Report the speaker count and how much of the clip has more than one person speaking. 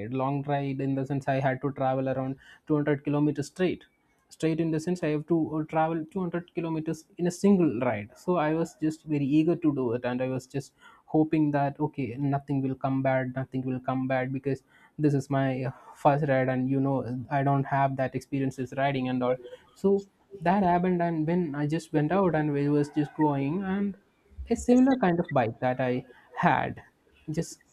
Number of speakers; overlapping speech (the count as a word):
one, no overlap